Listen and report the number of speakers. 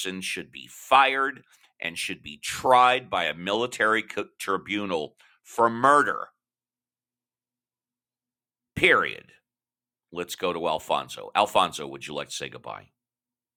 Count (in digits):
1